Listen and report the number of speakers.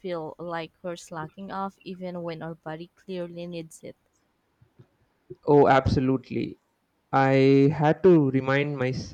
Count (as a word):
two